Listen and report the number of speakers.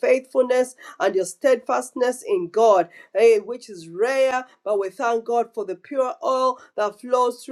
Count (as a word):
one